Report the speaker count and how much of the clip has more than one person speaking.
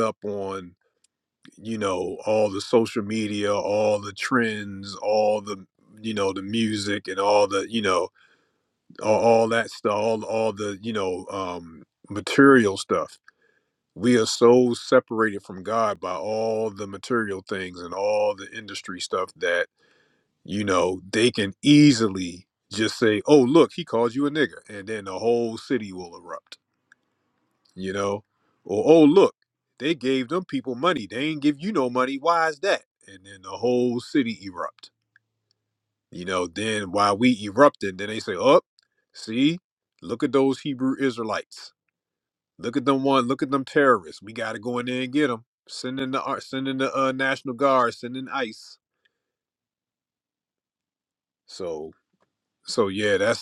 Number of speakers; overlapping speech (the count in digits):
1, no overlap